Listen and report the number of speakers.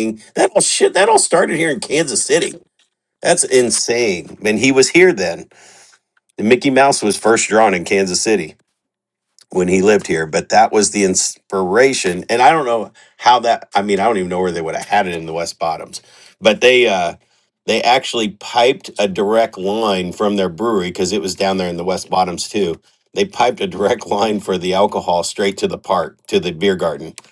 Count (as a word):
one